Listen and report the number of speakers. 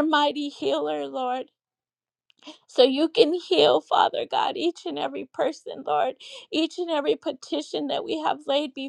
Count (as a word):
one